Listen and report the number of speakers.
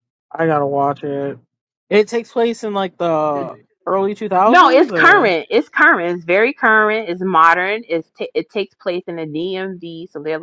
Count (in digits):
2